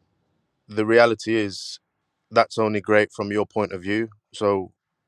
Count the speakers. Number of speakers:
1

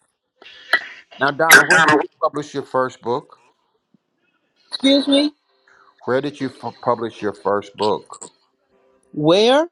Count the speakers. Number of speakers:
2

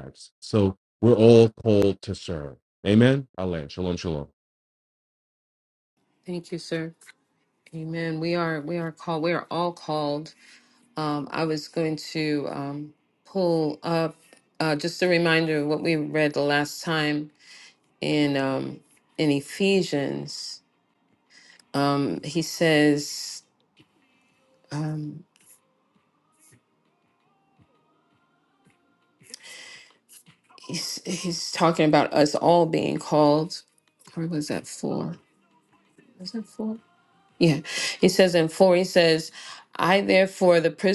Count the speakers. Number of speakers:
2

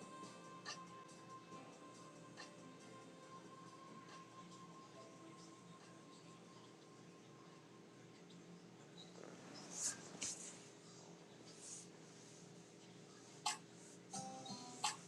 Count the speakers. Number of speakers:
0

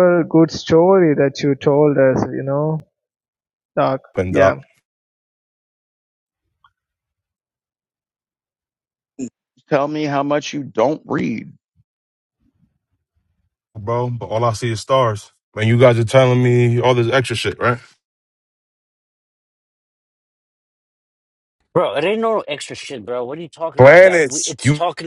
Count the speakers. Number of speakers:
4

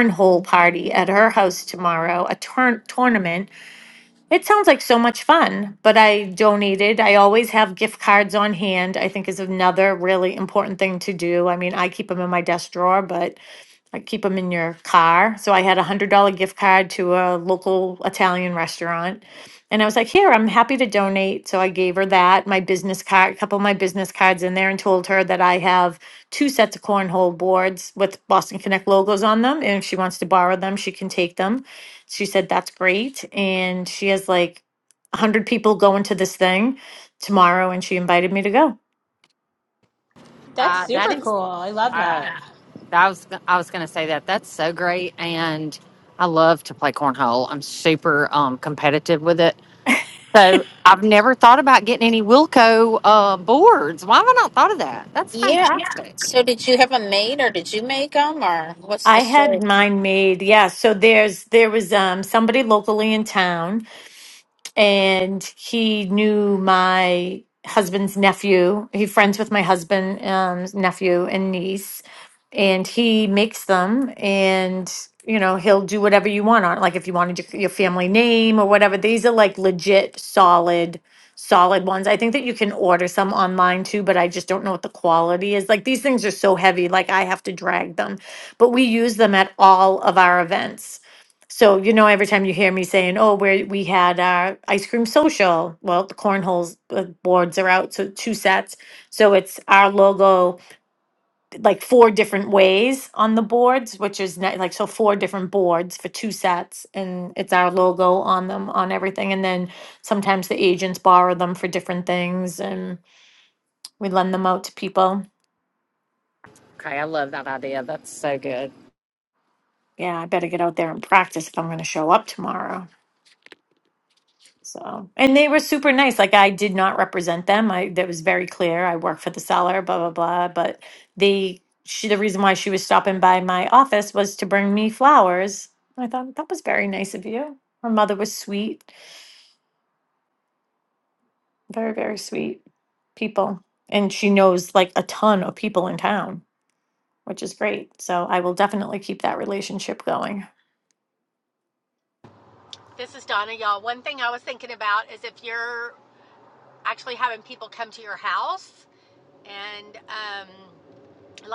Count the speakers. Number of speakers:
5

